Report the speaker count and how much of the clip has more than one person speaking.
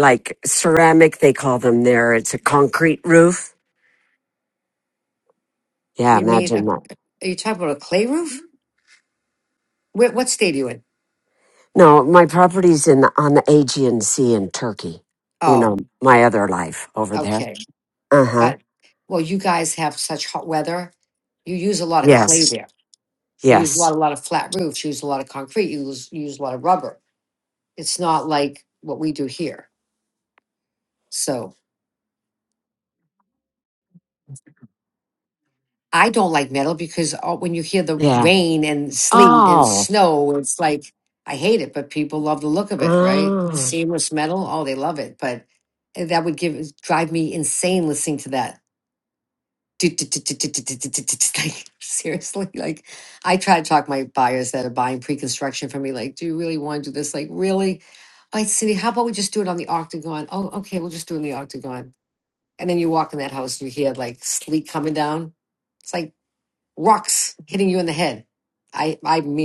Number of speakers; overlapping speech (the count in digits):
2, about 6%